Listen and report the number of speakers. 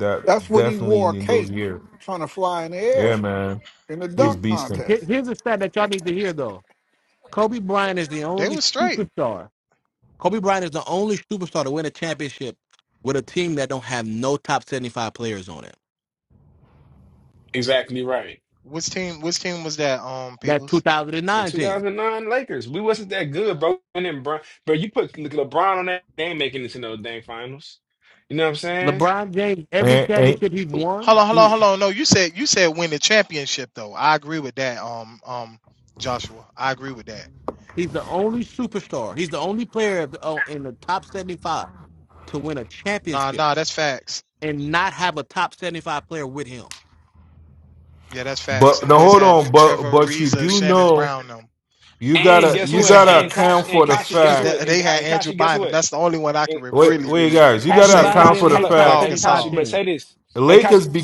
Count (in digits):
5